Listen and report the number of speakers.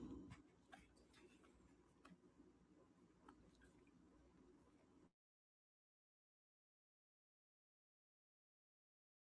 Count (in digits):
0